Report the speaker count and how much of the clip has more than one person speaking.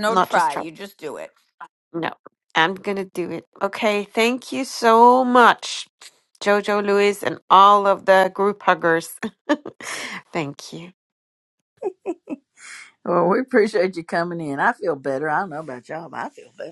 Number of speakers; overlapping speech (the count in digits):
3, about 3%